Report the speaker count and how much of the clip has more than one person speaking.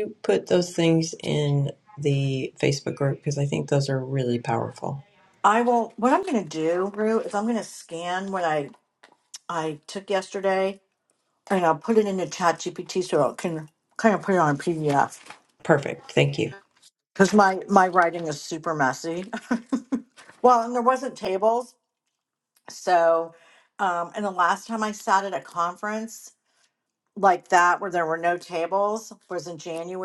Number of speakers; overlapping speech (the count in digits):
2, no overlap